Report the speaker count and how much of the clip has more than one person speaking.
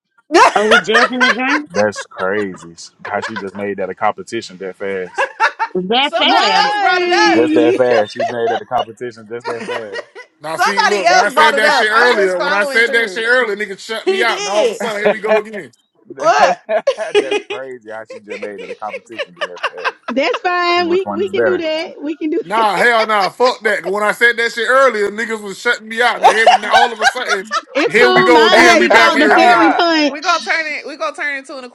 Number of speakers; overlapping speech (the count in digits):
5, about 27%